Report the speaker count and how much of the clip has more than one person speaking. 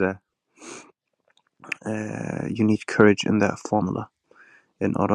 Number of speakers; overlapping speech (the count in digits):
1, no overlap